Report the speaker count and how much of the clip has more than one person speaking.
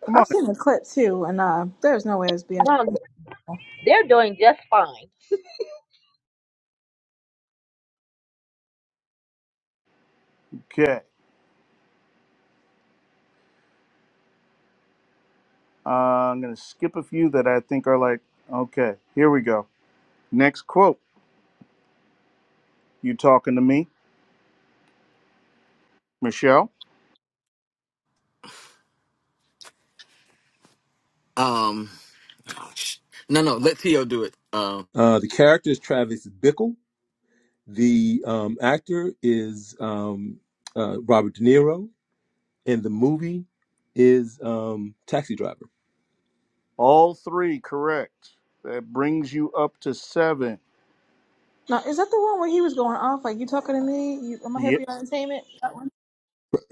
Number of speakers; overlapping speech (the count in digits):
5, about 1%